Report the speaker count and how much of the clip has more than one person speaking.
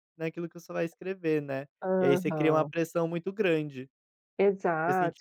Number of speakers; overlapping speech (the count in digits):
2, about 20%